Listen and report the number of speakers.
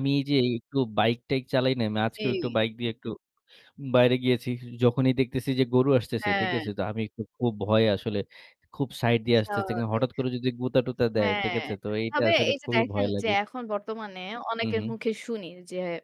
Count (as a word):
two